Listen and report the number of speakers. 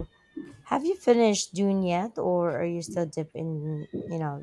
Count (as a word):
one